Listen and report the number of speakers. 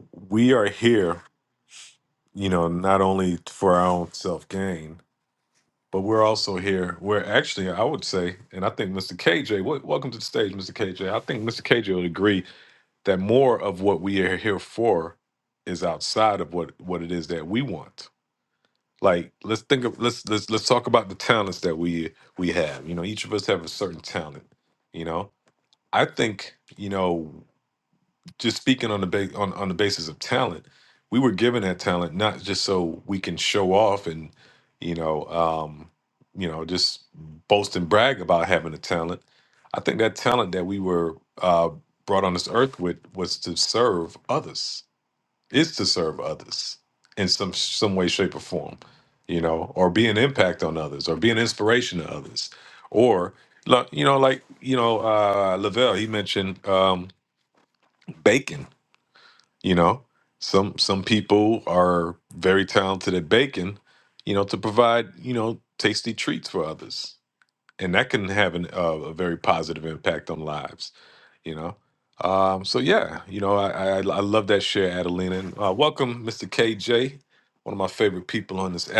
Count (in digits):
1